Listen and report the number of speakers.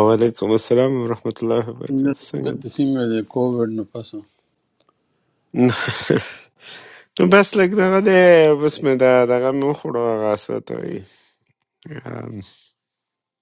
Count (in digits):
2